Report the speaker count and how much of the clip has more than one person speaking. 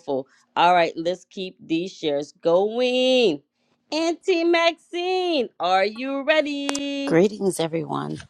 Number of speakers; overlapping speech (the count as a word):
two, about 1%